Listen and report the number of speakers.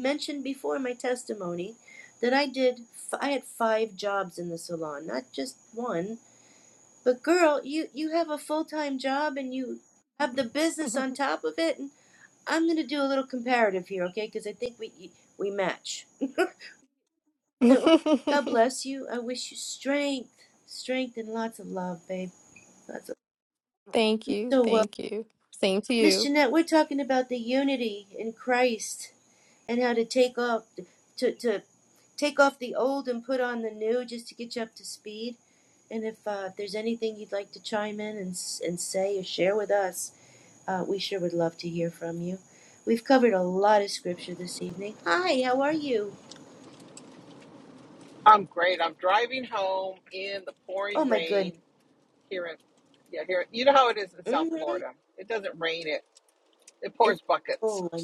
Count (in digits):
3